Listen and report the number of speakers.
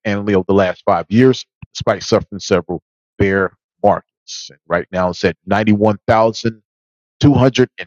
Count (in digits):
1